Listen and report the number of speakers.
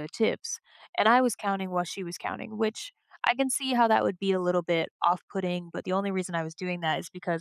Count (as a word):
one